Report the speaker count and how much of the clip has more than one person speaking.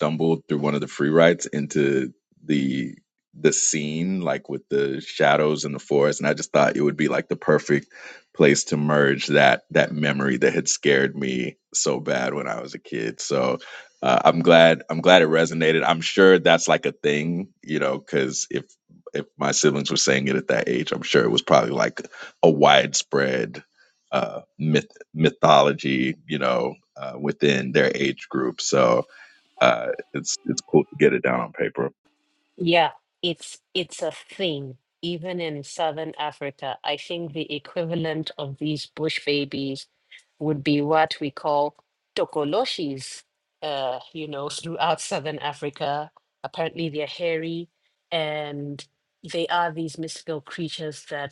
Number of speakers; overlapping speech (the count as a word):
two, no overlap